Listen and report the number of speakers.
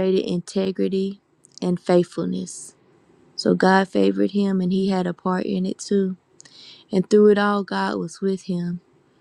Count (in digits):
1